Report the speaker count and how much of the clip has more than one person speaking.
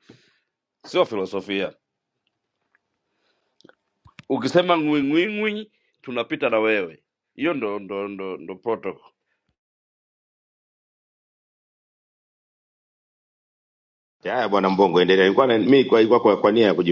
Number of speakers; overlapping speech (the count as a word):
two, no overlap